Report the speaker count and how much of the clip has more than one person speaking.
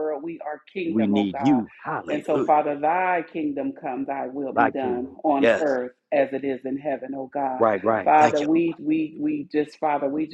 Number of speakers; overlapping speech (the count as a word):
two, about 25%